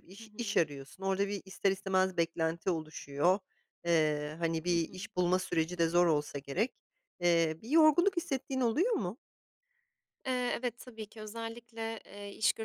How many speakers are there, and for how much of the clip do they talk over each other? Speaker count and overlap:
2, about 5%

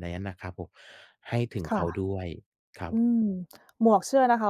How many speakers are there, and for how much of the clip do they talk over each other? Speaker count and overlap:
2, about 7%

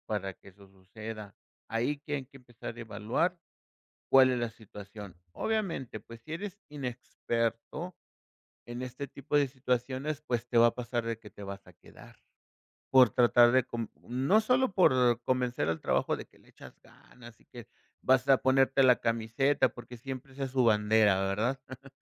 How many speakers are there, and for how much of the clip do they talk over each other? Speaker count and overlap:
1, no overlap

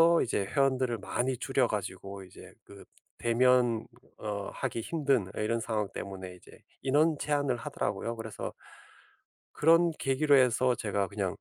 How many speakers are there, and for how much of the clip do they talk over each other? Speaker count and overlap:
1, no overlap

